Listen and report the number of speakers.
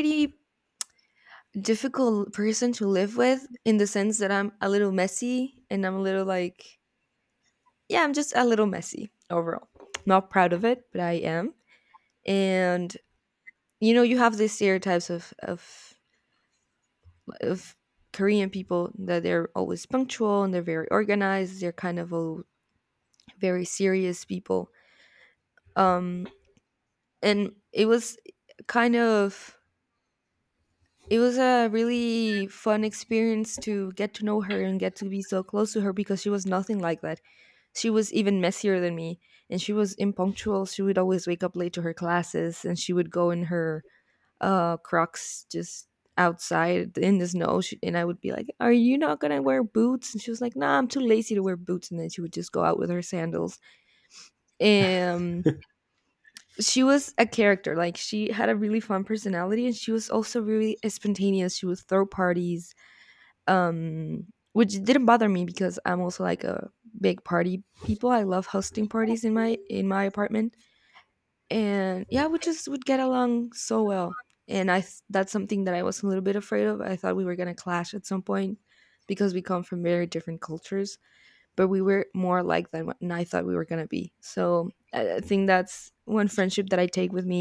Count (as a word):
one